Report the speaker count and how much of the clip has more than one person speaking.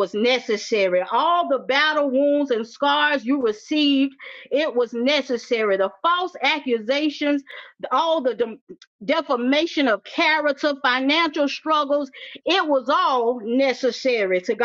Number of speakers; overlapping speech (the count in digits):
1, no overlap